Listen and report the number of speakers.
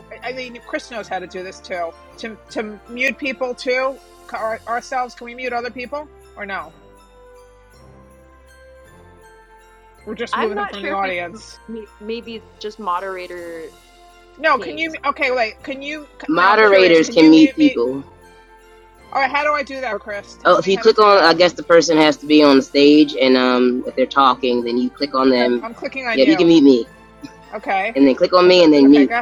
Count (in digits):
3